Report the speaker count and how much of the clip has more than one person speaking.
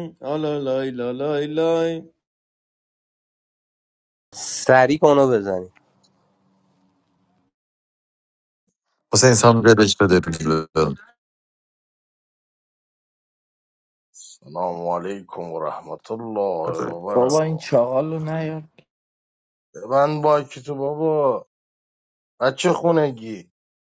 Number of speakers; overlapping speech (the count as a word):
five, about 2%